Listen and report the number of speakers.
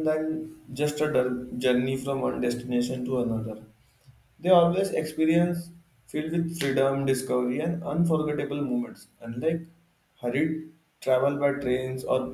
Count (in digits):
1